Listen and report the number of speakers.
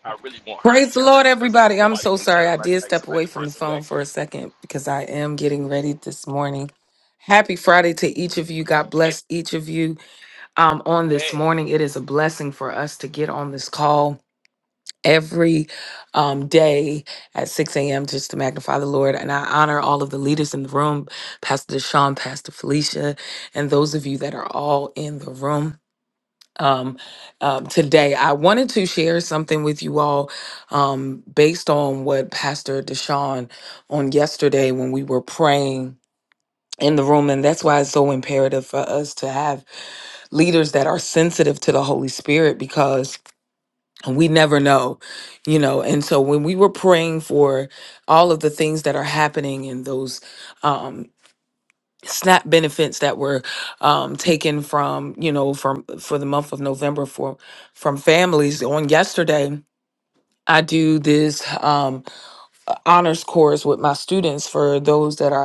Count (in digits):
2